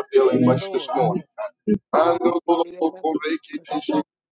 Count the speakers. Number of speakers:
2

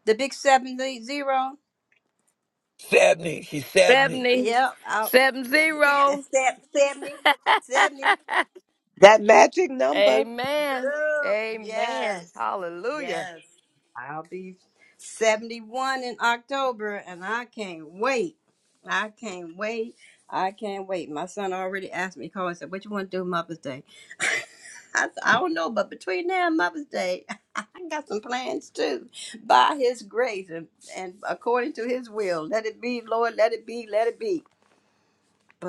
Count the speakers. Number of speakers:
4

